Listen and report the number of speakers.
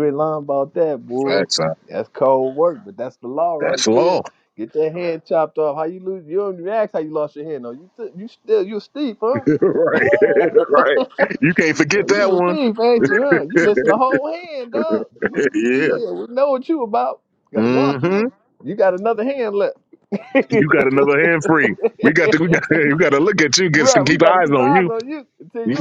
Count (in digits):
2